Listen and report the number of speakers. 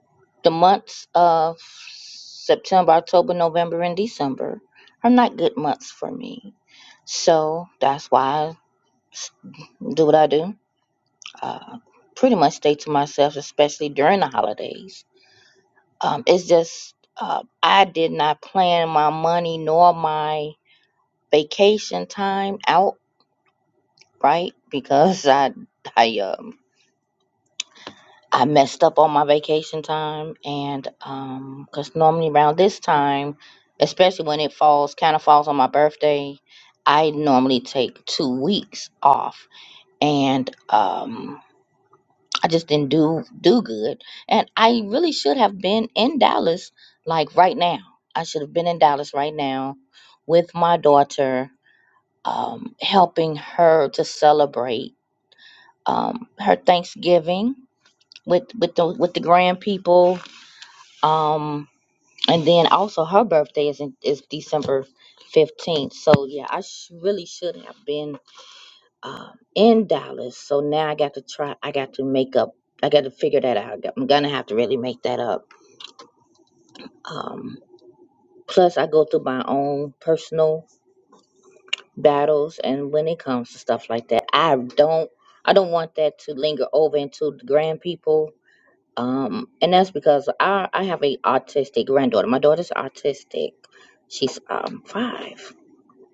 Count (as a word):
one